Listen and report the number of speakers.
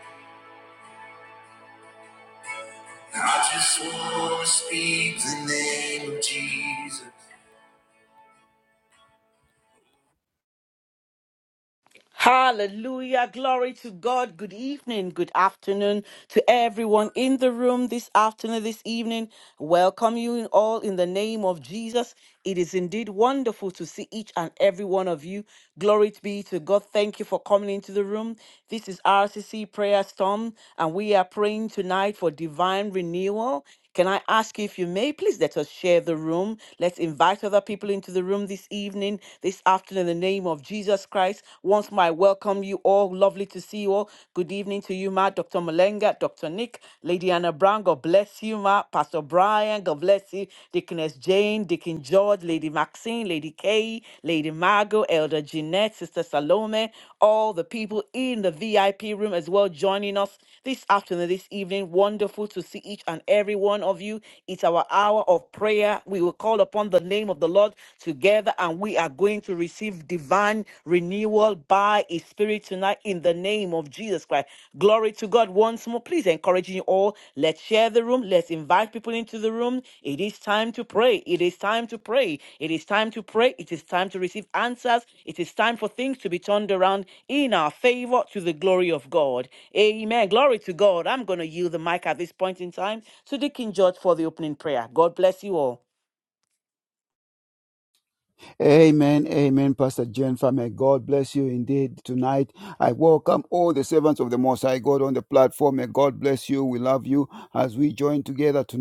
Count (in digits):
3